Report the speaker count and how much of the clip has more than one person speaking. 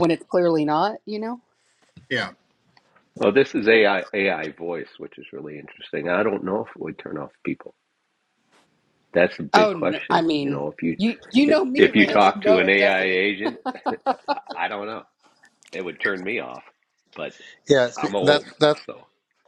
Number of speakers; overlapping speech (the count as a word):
three, about 17%